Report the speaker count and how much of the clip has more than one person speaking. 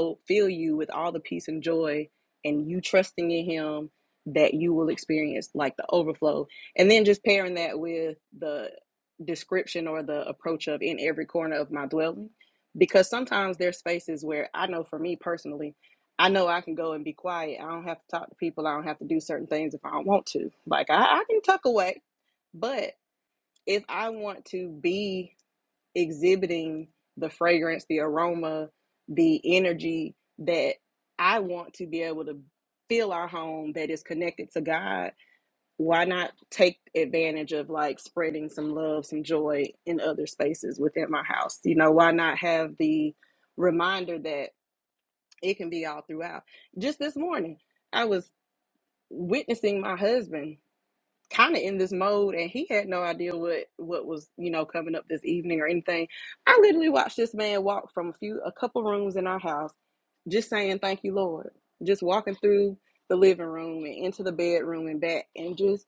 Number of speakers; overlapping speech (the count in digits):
1, no overlap